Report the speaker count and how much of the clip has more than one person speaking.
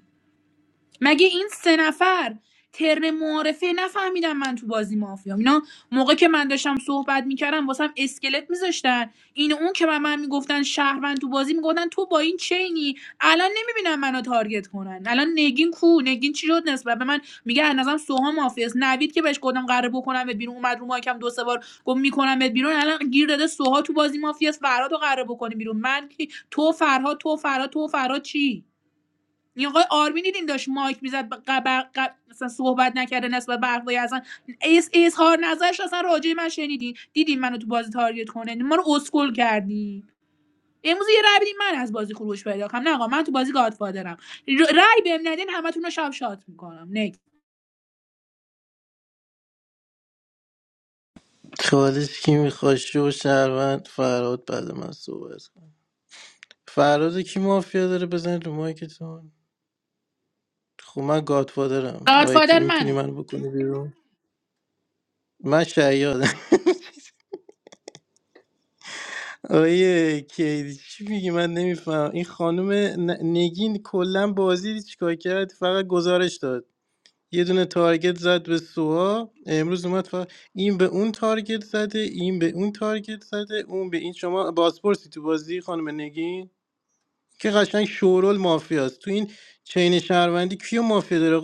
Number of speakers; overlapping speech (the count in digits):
2, about 1%